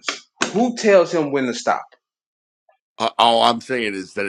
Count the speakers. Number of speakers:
2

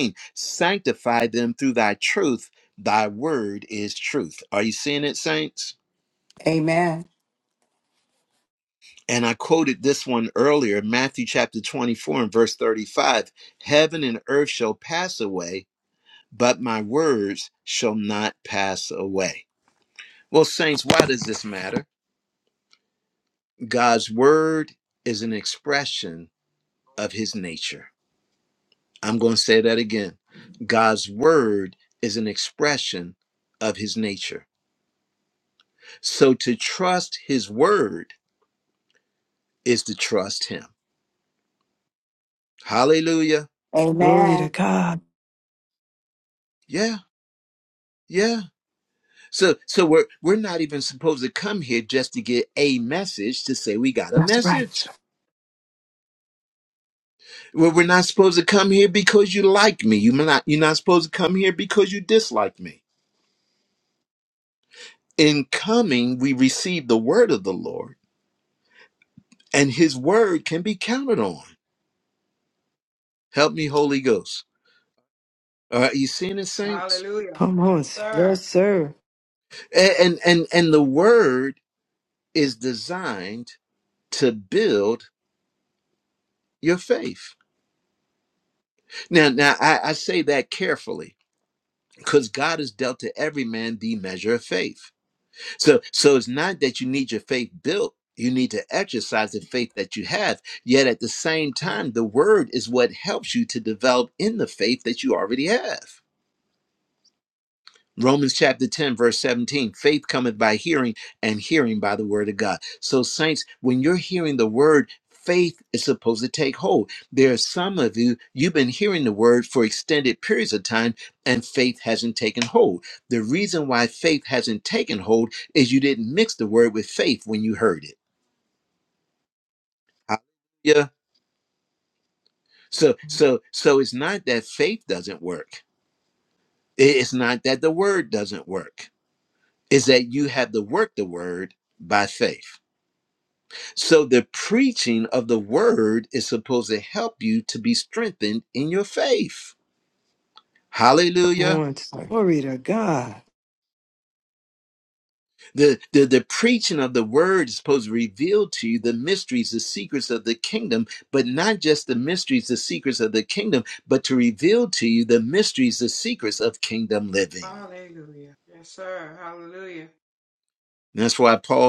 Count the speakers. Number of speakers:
4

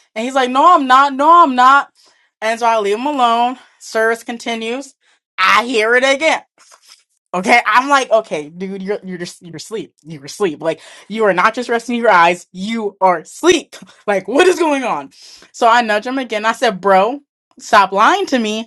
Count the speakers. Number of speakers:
1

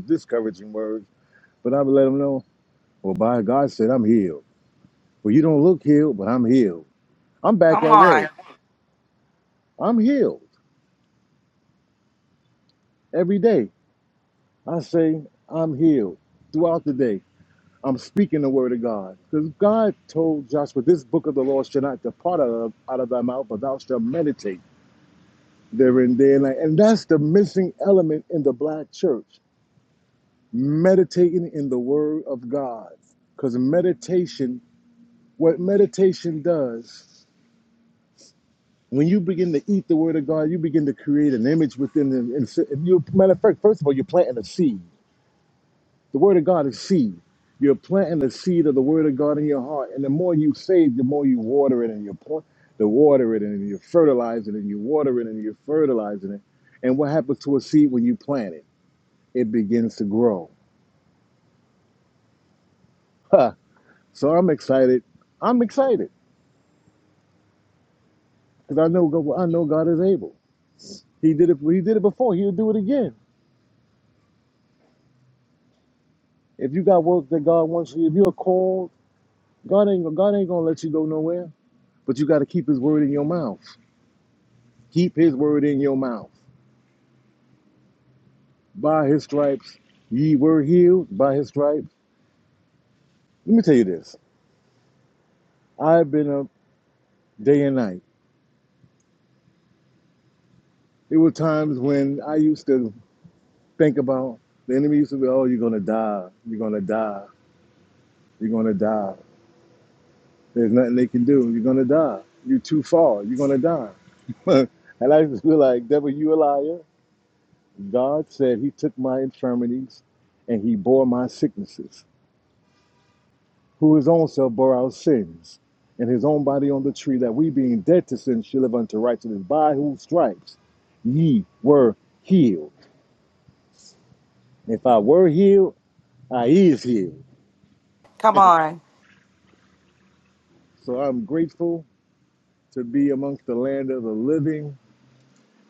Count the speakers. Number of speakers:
2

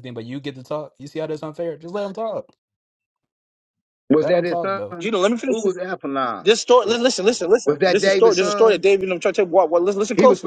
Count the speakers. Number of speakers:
3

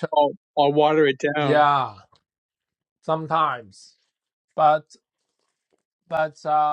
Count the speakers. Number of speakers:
2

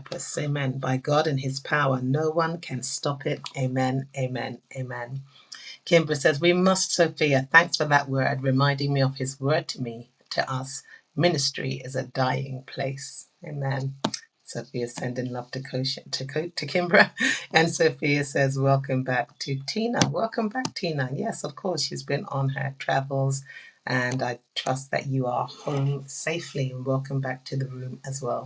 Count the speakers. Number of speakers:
1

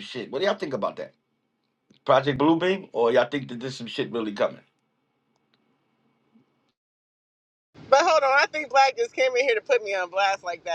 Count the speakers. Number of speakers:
2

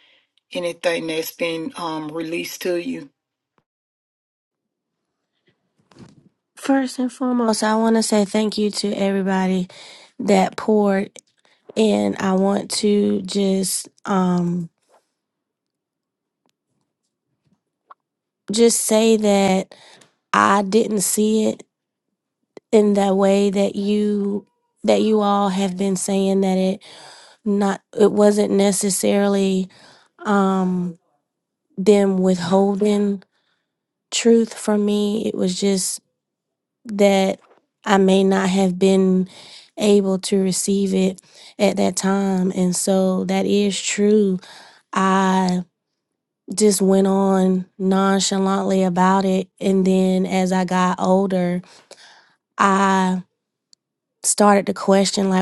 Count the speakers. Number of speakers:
2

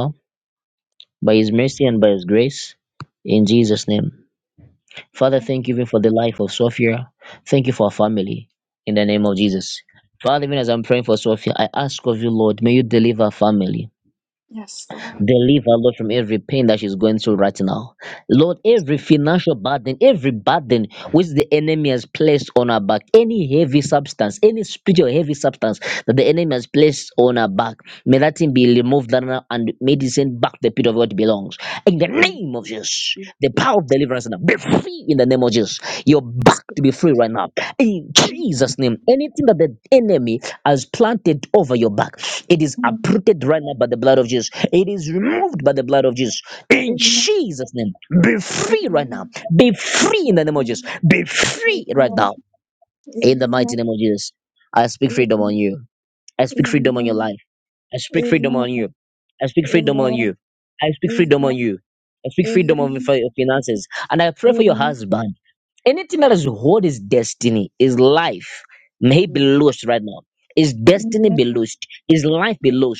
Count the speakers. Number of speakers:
2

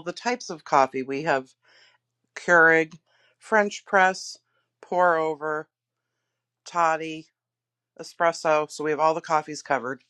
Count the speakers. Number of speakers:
1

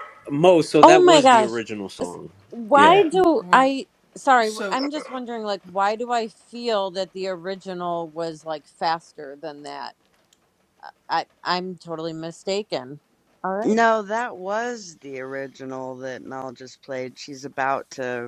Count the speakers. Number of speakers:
3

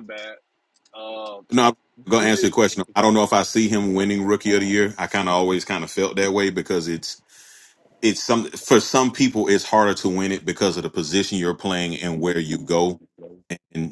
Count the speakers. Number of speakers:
2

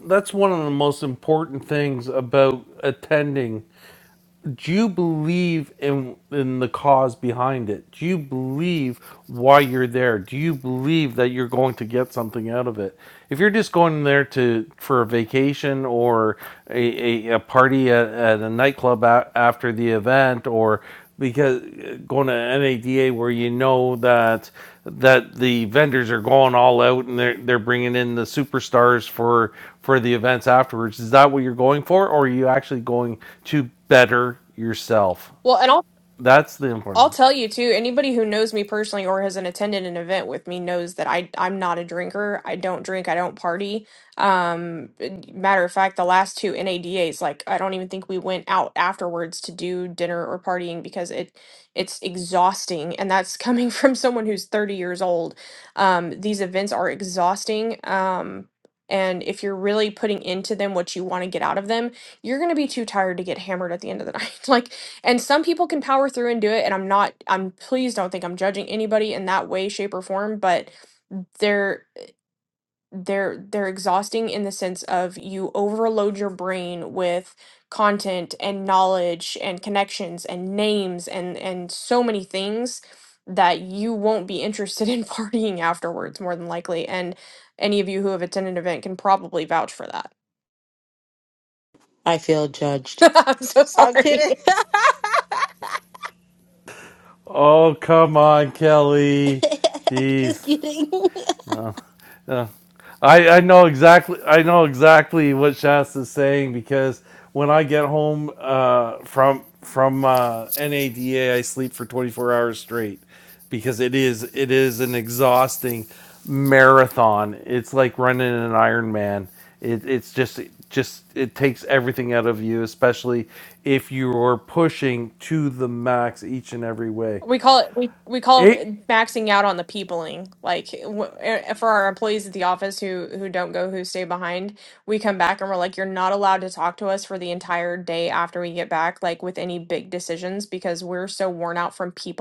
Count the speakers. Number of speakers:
3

